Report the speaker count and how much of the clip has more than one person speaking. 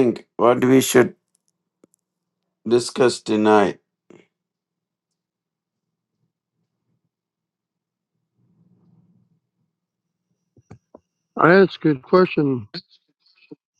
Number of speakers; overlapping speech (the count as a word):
two, no overlap